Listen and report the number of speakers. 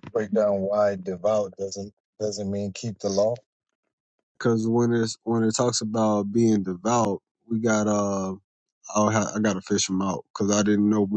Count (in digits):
2